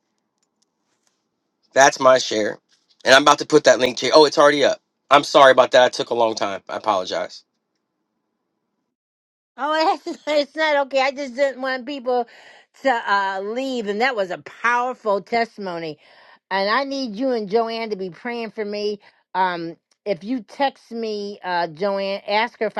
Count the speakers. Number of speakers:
two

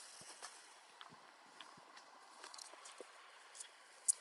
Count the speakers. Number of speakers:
zero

